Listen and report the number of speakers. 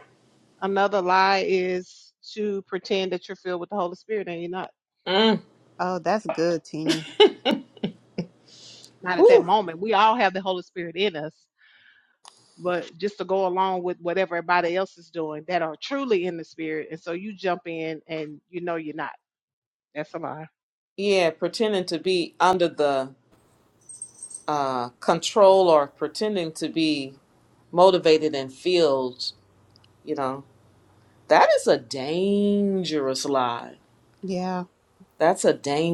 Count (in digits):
3